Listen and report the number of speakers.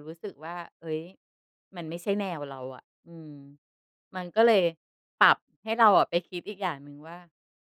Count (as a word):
one